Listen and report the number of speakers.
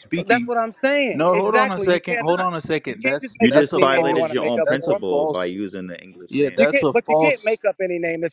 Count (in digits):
3